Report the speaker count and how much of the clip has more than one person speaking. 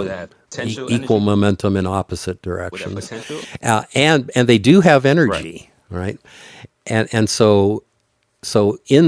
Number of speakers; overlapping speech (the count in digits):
2, about 15%